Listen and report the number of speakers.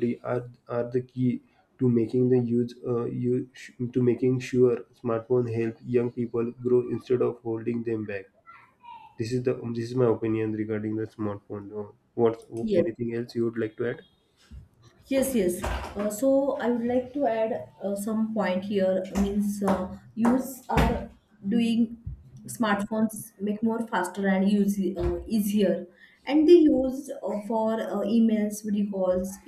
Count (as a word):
two